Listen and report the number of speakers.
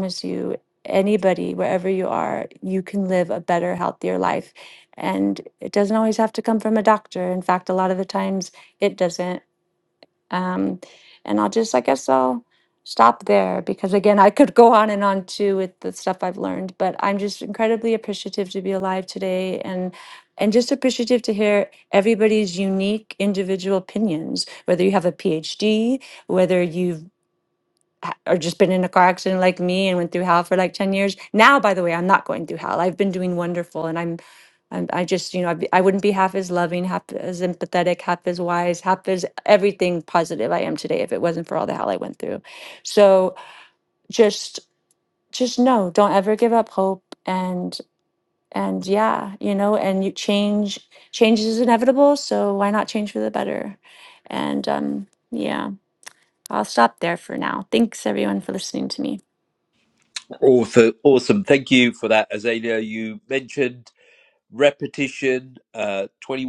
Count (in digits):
2